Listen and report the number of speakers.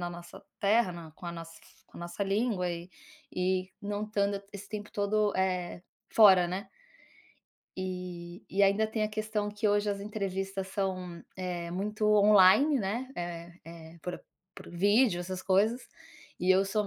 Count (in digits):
1